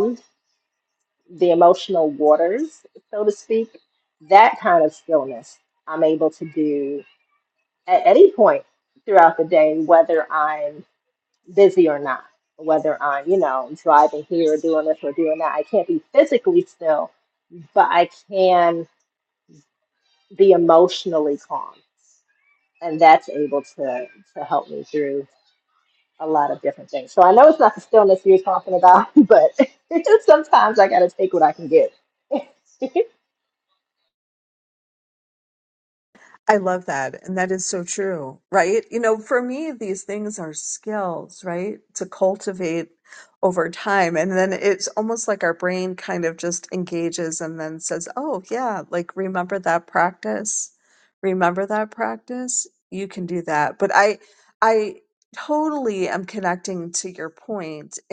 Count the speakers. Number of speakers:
2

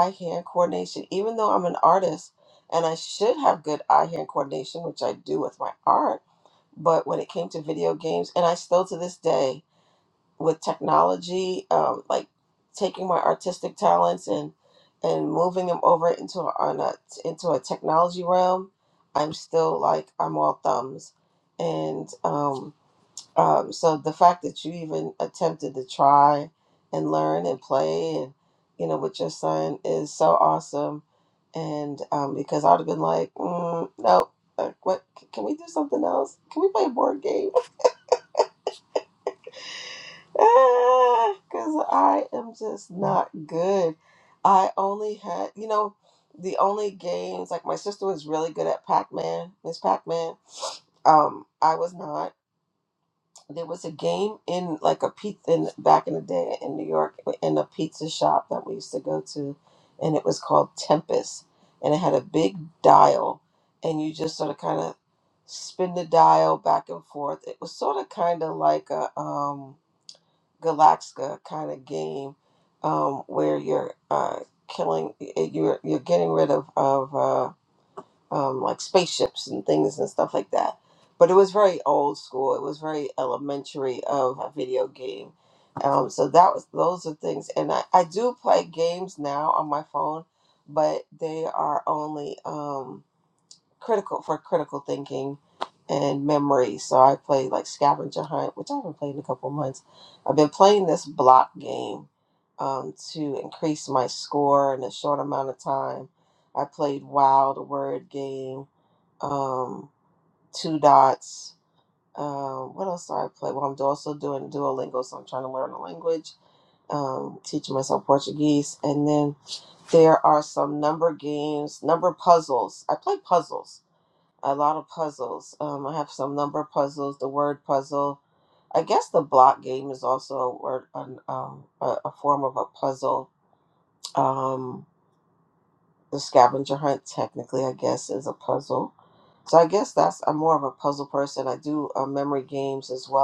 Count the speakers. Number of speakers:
1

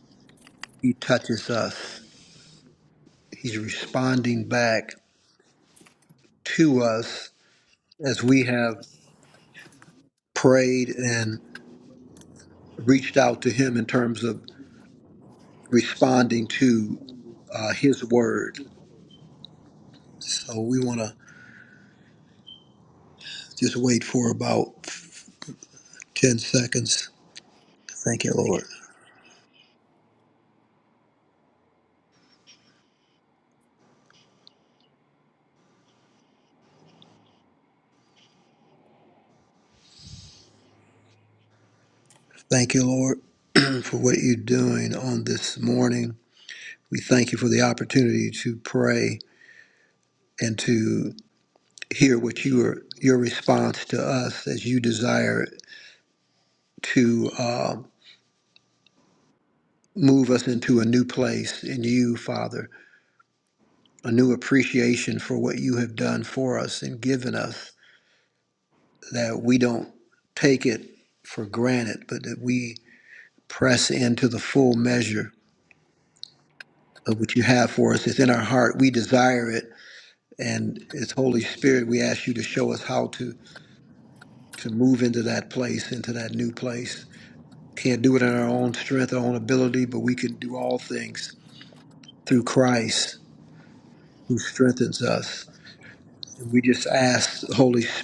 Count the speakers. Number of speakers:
1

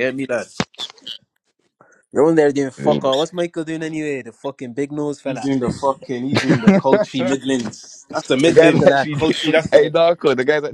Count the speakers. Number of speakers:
3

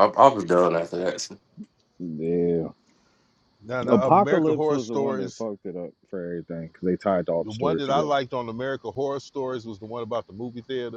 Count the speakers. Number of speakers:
3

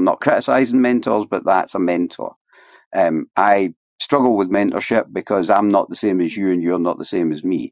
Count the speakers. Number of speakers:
1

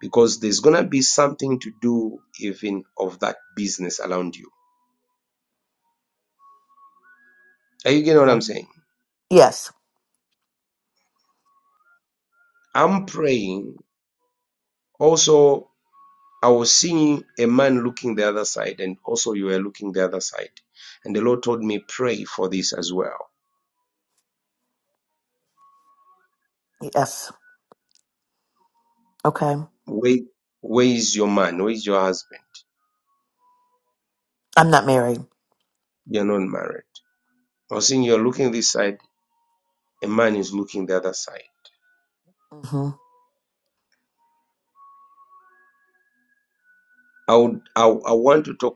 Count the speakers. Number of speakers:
2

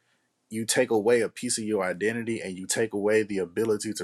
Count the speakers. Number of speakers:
1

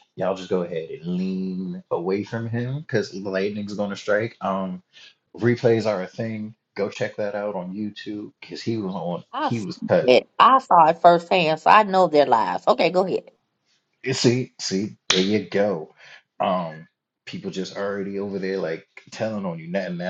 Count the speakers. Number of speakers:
2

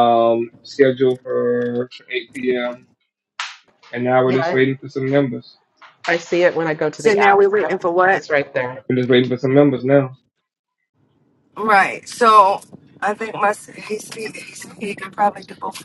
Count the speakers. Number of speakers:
3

